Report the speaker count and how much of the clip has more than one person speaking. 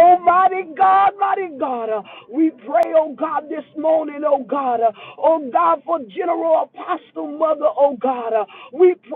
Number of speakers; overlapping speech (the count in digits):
1, no overlap